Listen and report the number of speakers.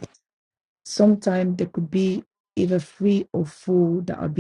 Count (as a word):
one